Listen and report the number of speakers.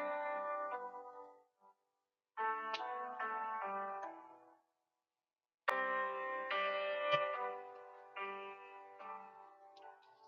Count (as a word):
zero